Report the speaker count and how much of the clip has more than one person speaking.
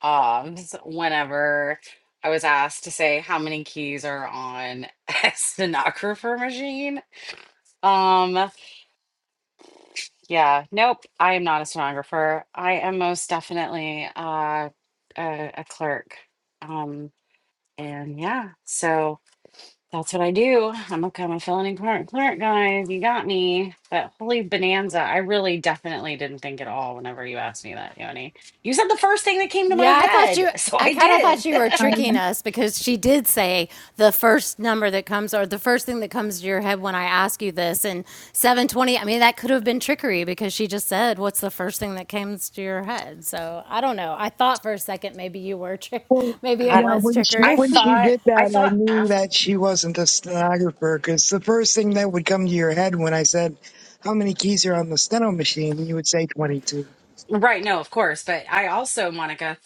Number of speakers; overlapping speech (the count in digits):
3, about 7%